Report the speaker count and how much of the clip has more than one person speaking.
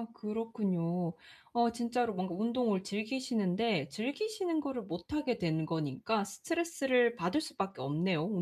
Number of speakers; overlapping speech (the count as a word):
one, no overlap